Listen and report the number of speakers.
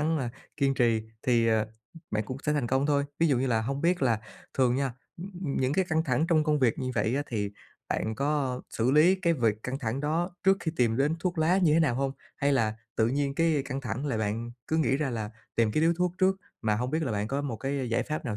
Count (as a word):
one